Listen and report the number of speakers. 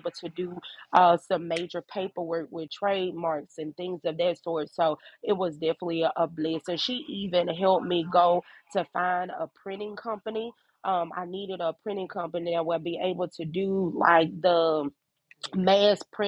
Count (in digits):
1